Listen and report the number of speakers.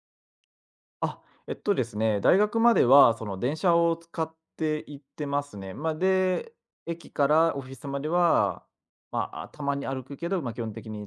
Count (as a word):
one